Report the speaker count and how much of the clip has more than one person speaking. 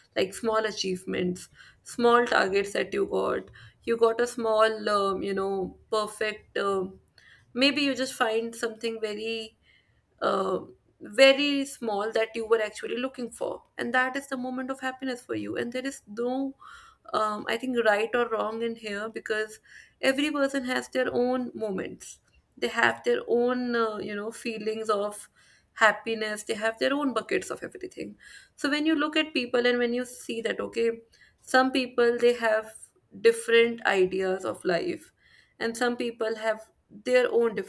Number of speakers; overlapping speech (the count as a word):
one, no overlap